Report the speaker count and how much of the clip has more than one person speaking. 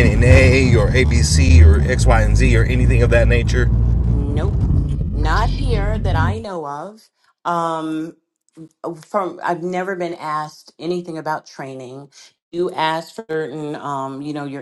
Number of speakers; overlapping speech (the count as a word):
two, no overlap